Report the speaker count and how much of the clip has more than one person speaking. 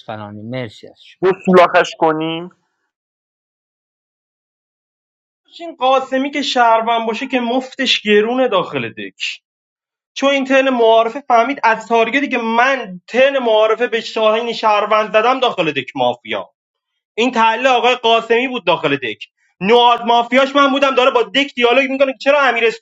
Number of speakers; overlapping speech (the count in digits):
3, about 1%